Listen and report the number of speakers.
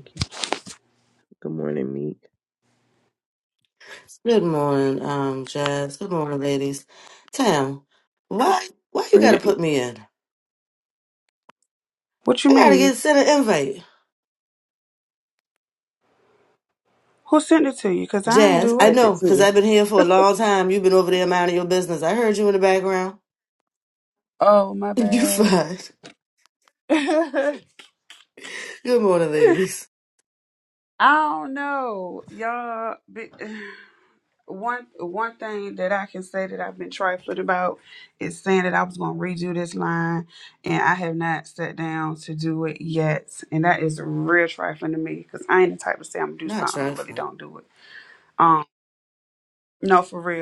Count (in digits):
3